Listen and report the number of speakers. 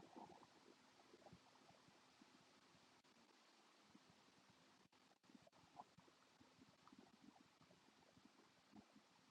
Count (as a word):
zero